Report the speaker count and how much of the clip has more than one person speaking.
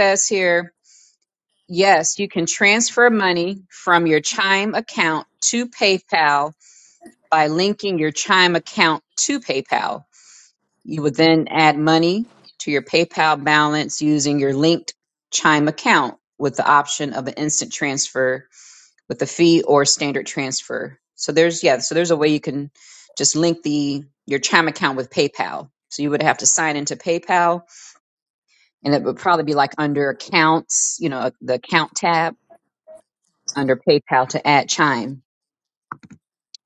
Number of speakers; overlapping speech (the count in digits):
1, no overlap